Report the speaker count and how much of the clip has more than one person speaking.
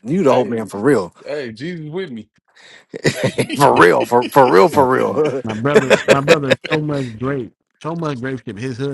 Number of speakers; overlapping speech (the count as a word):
three, about 6%